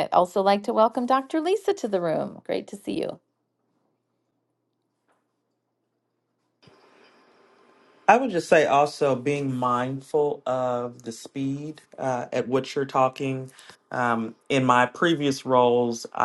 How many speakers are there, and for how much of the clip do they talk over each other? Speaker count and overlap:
two, no overlap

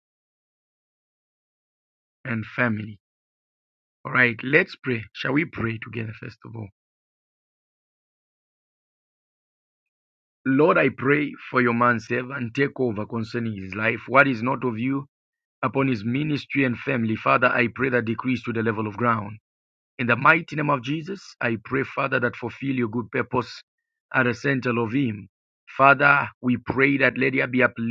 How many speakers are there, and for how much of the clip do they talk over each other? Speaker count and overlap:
one, no overlap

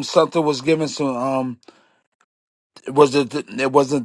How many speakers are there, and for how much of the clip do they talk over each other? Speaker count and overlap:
one, no overlap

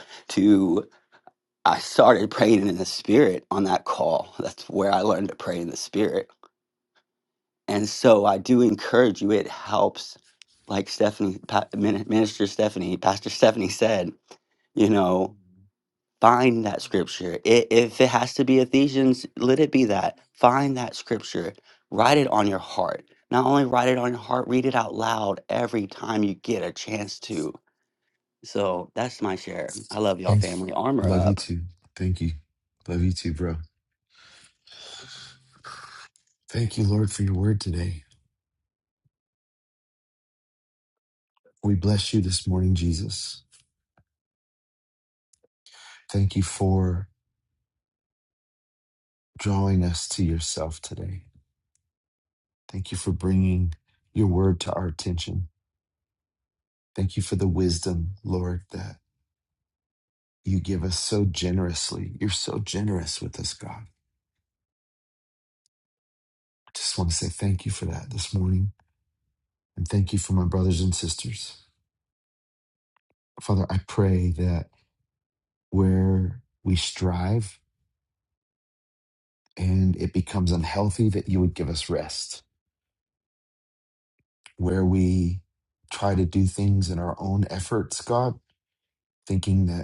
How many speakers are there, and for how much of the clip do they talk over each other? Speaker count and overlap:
two, about 1%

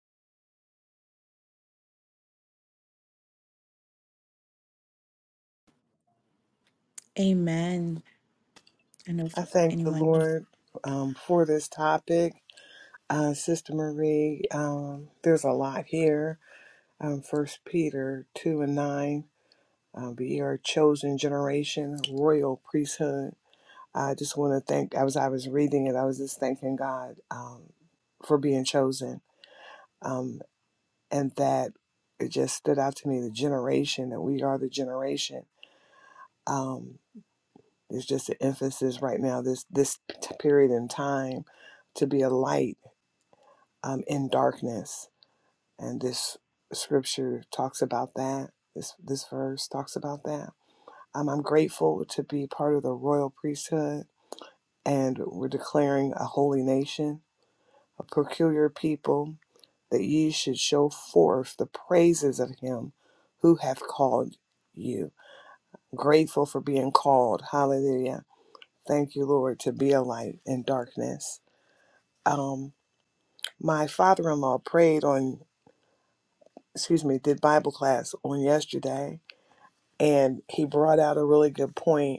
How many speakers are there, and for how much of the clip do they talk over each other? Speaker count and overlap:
two, about 1%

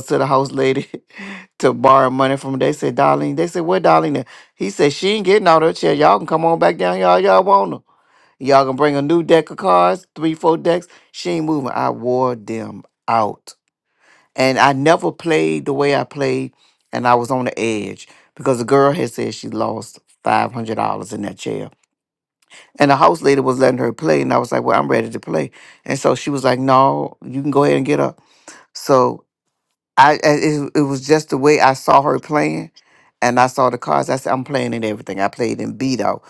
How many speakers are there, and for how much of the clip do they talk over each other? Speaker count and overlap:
one, no overlap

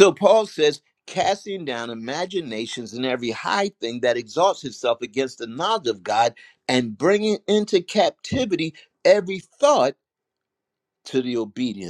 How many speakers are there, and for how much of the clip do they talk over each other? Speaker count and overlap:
one, no overlap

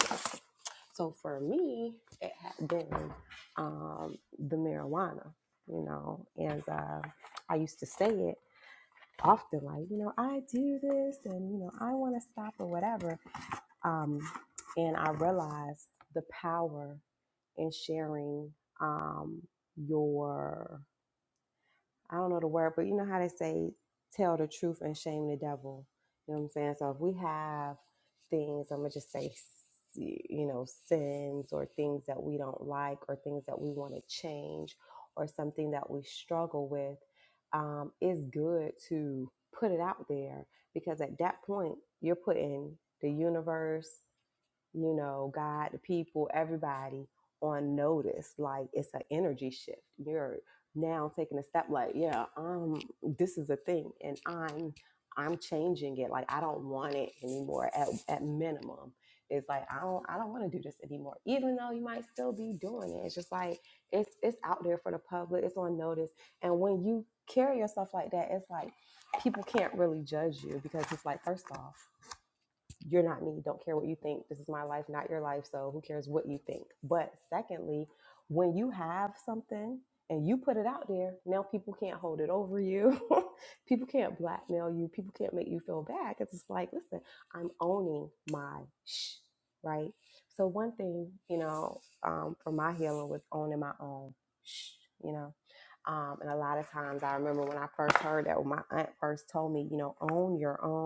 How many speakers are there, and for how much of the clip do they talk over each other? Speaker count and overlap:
one, no overlap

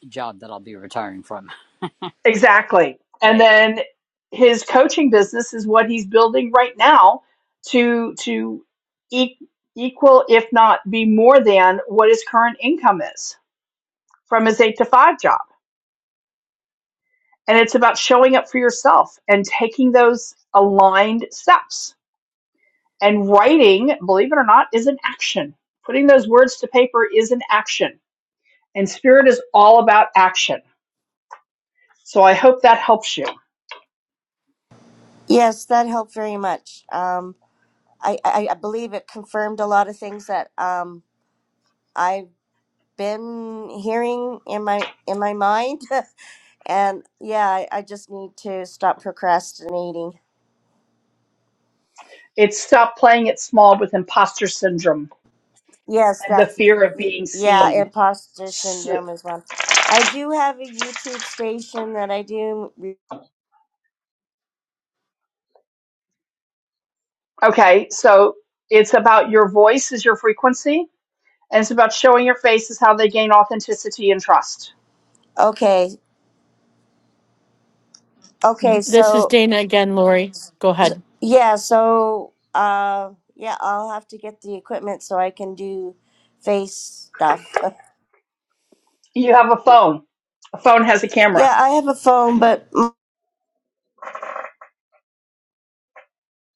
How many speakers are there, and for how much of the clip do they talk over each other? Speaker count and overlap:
four, about 2%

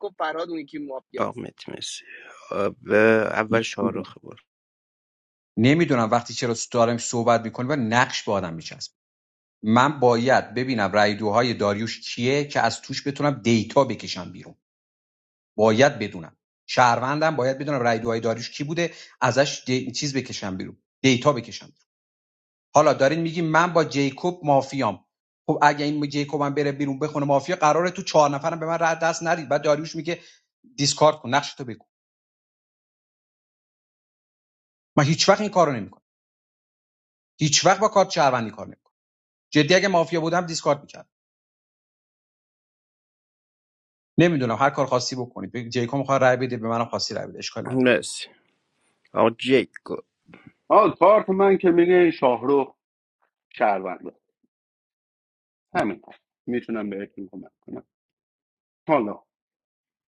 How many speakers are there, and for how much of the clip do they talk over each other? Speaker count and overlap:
four, about 1%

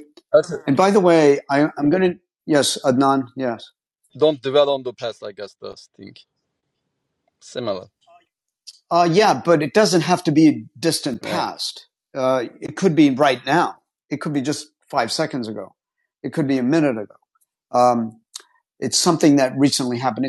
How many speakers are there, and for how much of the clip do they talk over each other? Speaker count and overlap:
two, about 1%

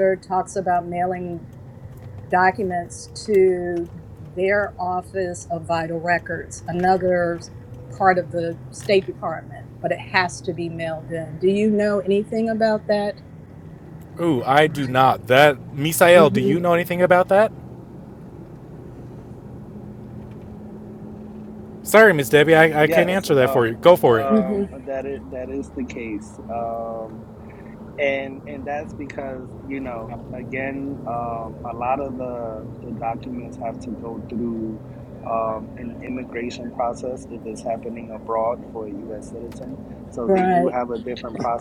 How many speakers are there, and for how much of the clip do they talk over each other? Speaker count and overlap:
three, about 5%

